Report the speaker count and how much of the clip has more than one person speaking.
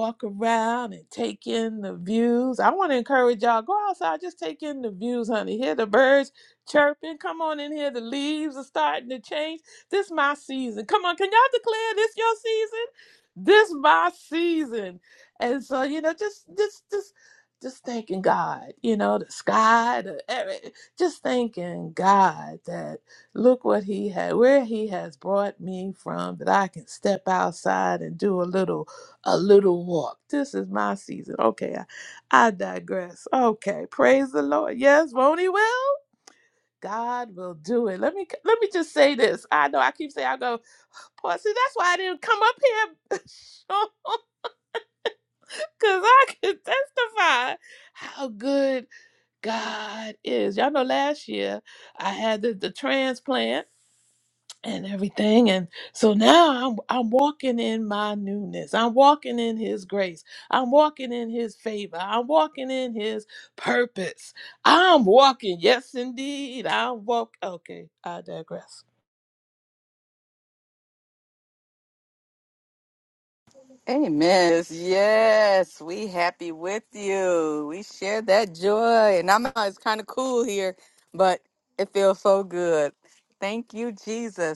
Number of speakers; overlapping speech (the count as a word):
two, no overlap